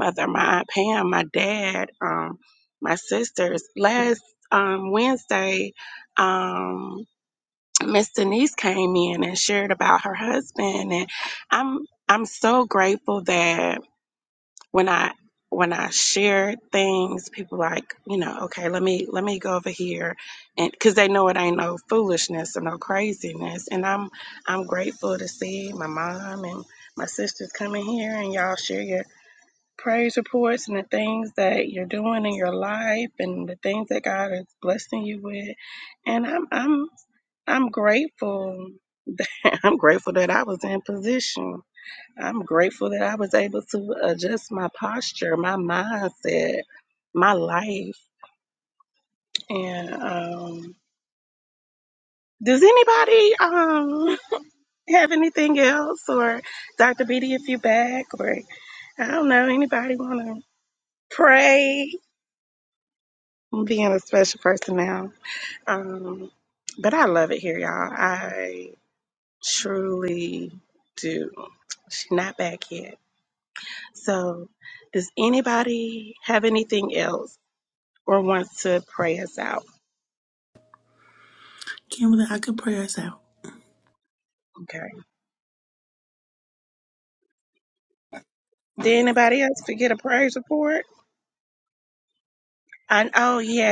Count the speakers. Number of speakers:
2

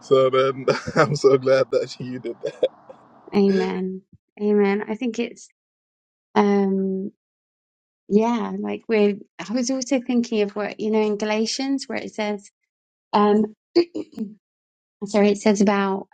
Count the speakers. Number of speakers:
2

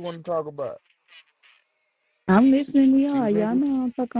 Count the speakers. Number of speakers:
2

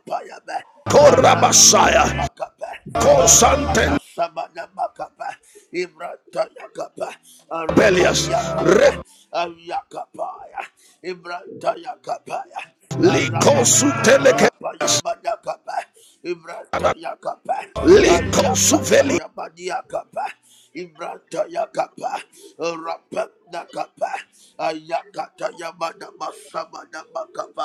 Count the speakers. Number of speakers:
2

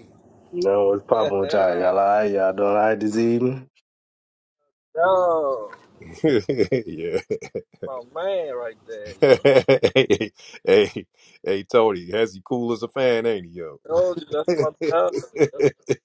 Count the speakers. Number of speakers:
3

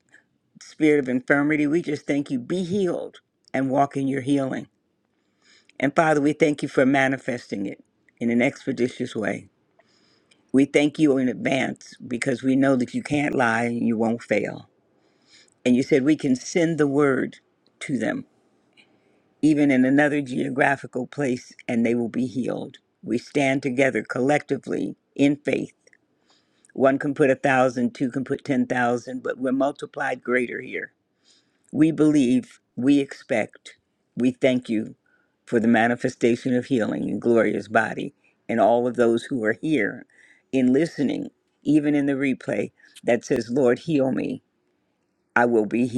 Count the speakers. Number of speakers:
1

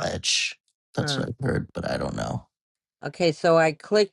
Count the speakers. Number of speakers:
2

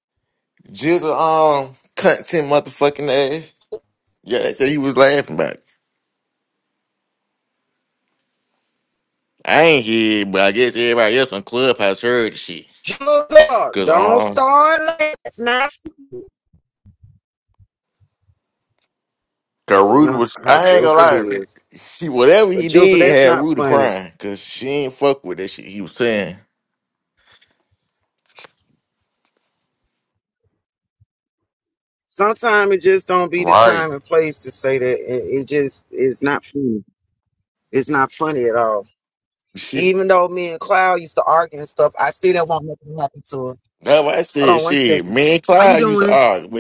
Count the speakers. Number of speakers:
2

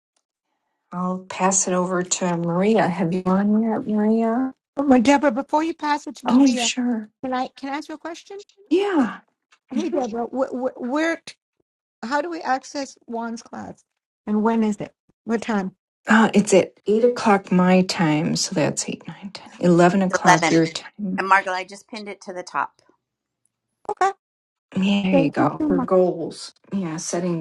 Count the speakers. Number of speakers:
3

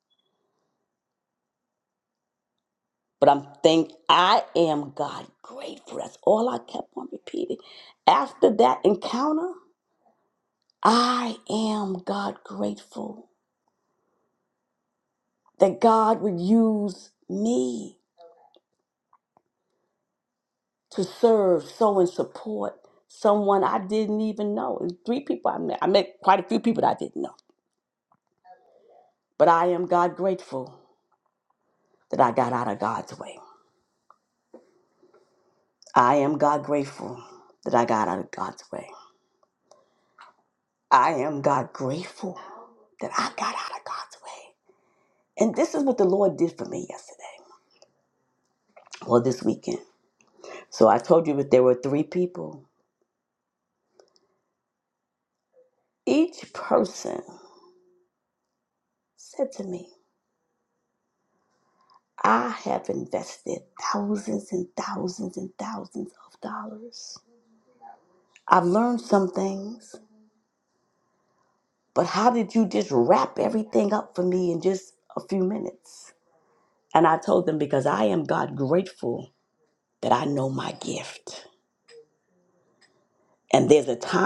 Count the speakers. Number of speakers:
1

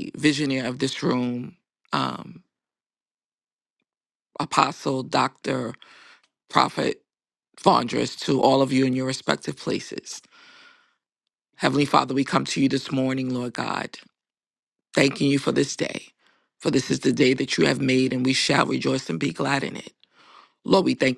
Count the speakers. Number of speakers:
1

